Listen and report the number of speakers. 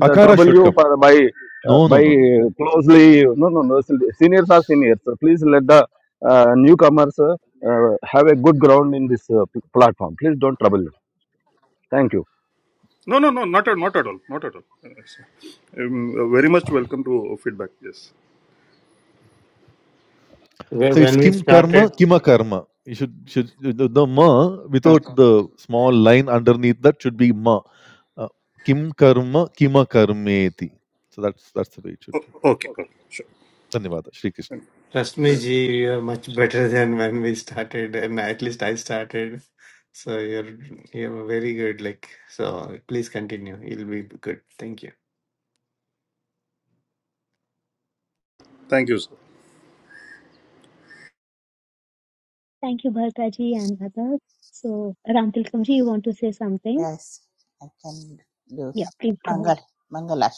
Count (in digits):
6